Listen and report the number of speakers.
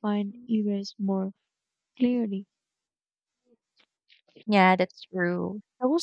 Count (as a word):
two